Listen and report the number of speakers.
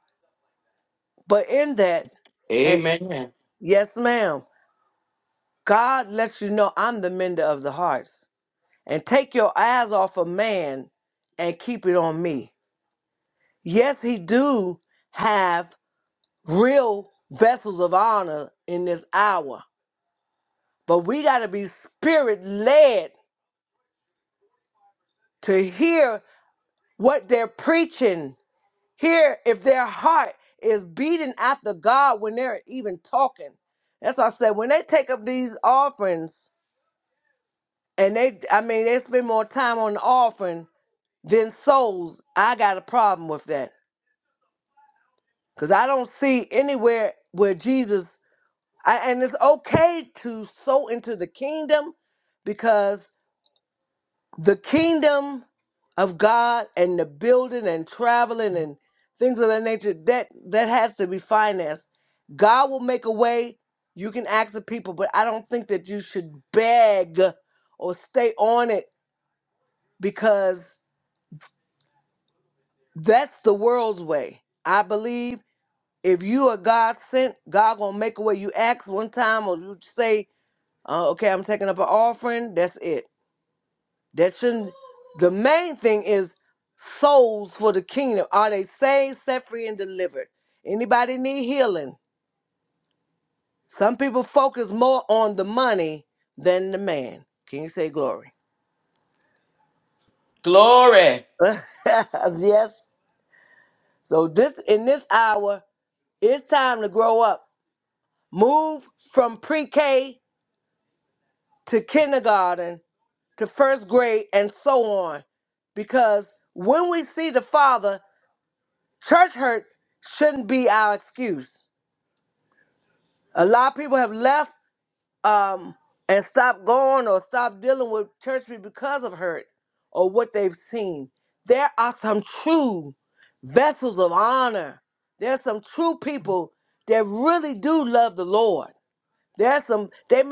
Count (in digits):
2